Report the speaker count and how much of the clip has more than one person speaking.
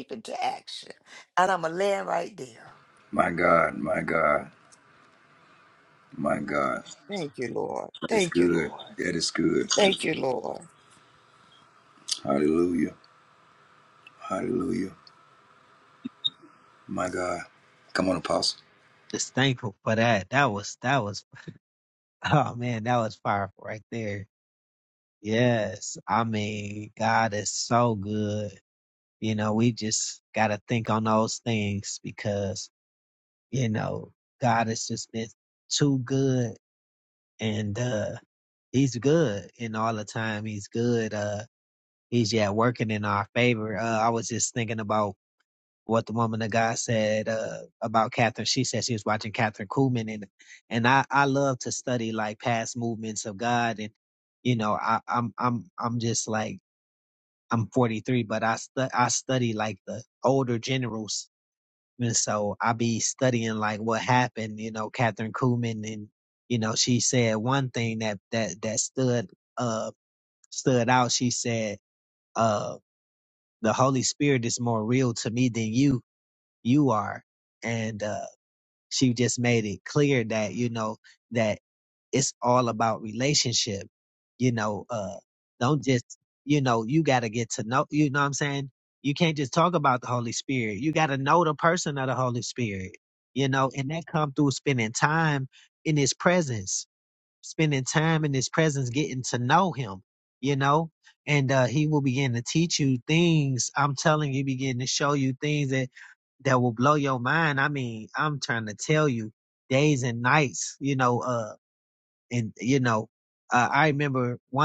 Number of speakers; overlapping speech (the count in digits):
3, about 1%